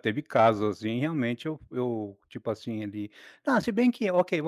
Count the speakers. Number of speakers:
1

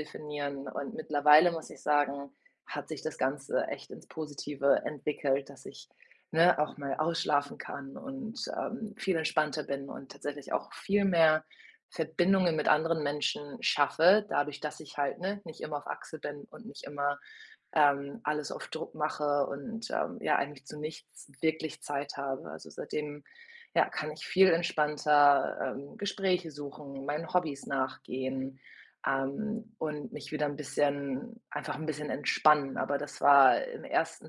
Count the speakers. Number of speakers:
1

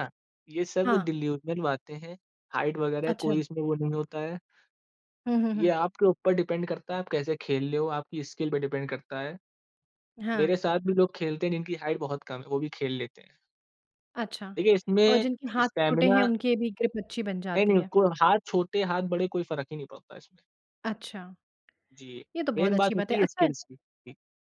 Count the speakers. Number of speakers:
2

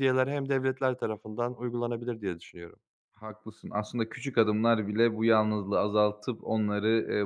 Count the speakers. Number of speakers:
2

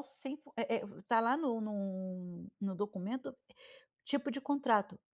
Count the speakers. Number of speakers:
1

